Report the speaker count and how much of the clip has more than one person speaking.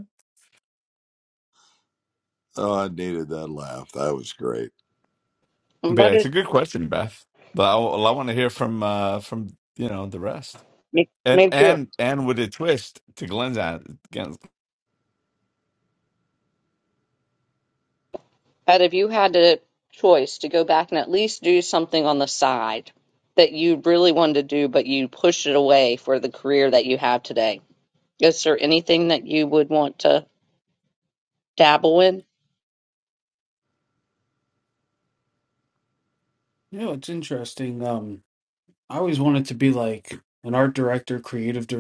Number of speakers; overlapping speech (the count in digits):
4, about 2%